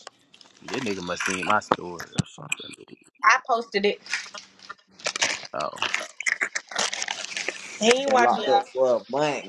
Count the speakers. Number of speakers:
3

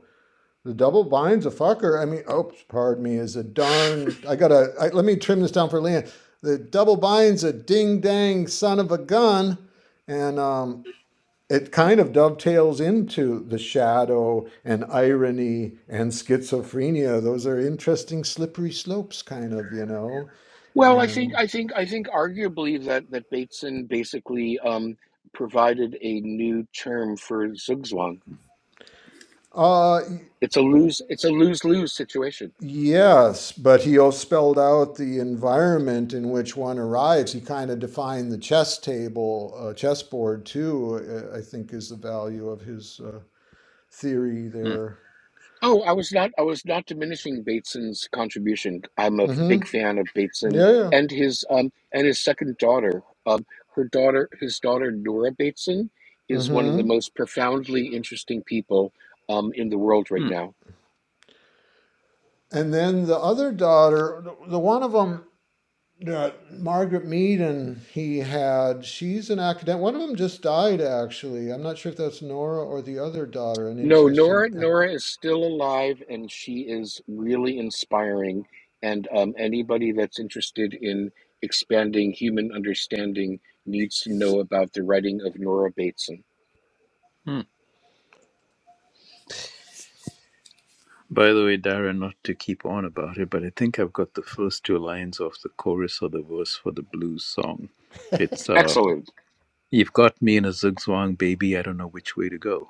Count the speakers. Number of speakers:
3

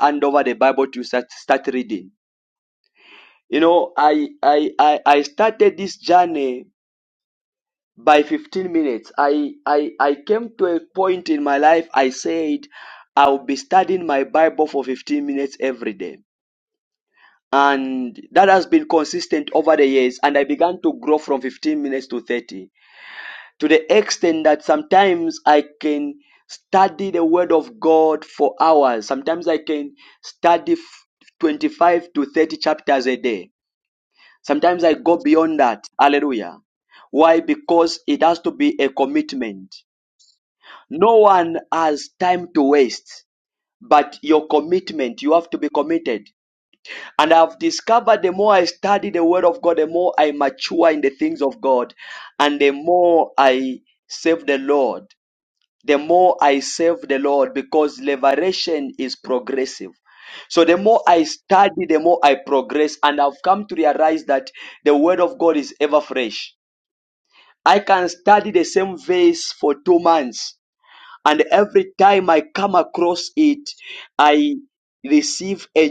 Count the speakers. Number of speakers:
1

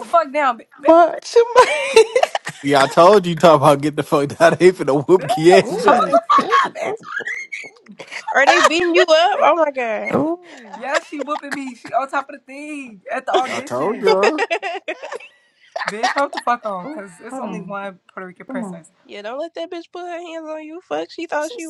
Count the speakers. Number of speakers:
5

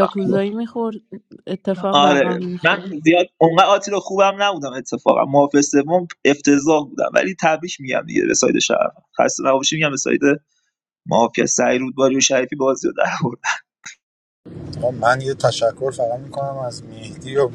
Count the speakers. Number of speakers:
3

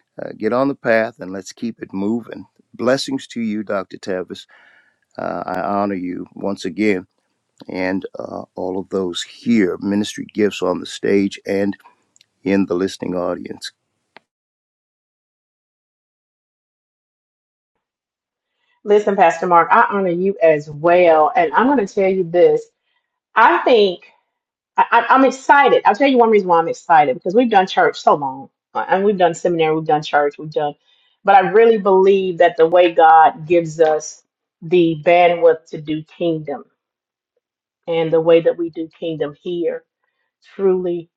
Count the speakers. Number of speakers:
2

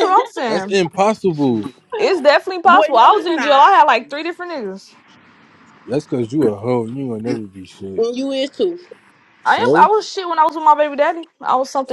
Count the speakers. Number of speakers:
3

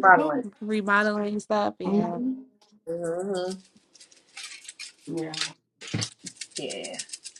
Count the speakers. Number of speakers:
3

